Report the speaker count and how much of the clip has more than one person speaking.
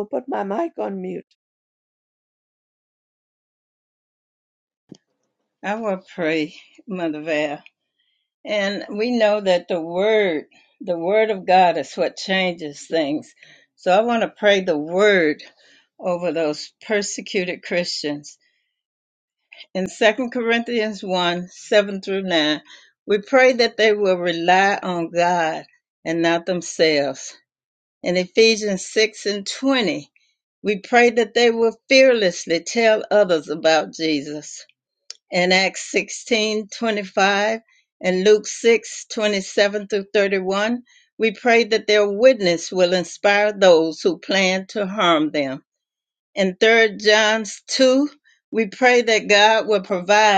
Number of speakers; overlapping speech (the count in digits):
2, no overlap